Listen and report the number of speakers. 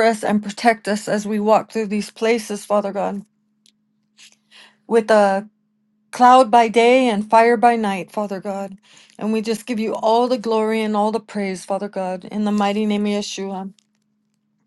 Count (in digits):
1